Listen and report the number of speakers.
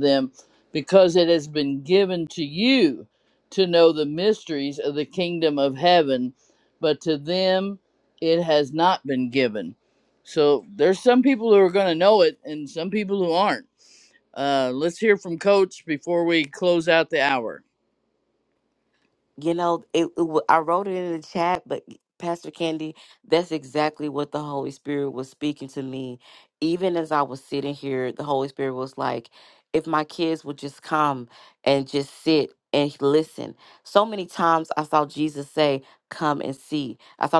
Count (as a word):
two